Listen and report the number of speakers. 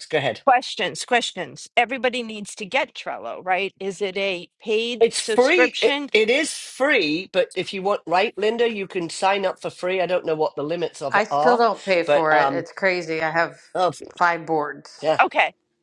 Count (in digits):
3